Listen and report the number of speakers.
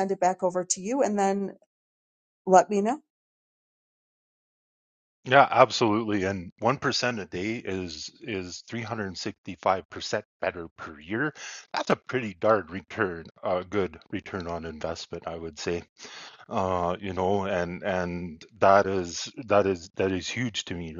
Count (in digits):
2